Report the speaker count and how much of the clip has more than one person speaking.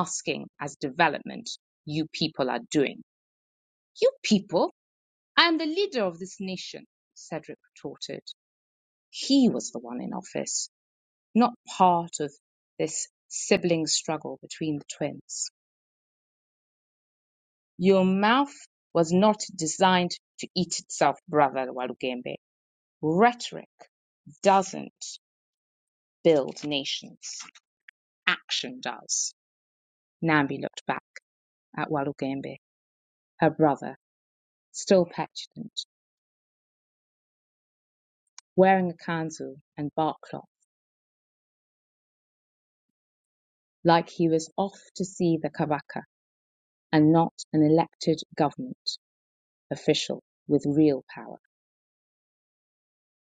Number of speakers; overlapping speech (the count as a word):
one, no overlap